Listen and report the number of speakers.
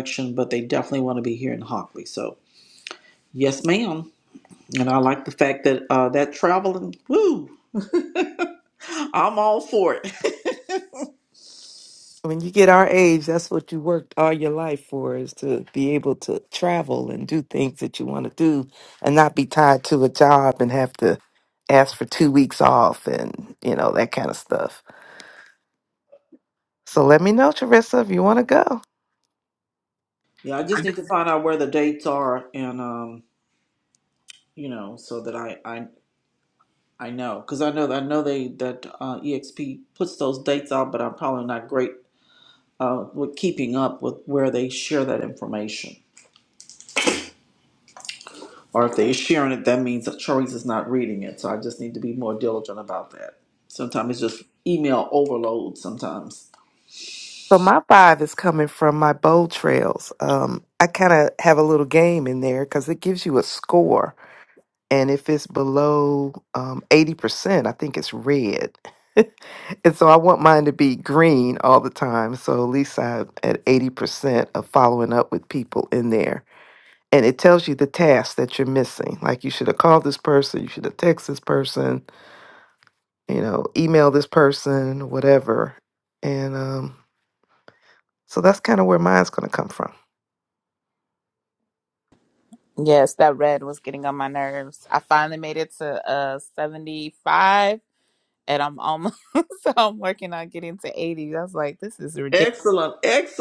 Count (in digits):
3